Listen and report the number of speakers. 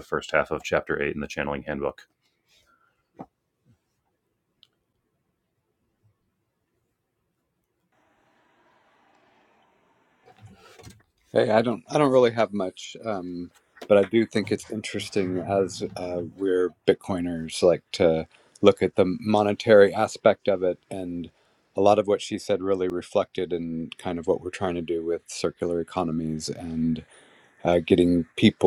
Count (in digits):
2